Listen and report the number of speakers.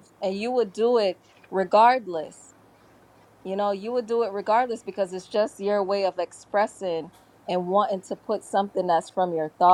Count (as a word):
one